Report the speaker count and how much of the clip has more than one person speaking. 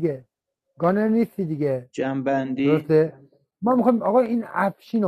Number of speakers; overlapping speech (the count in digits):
2, about 6%